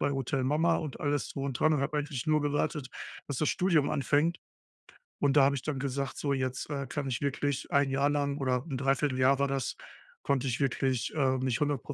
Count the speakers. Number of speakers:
1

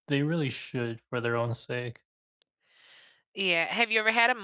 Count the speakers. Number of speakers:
2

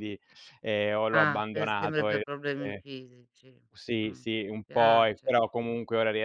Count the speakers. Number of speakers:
2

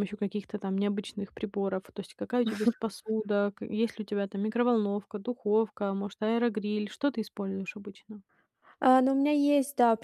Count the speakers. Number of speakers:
2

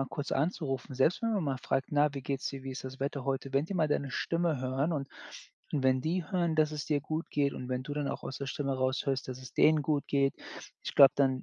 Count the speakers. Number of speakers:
1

